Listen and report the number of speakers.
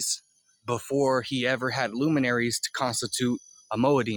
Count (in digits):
1